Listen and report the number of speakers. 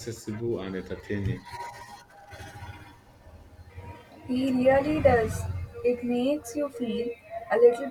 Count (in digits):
2